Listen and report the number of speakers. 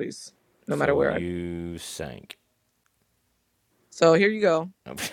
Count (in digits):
2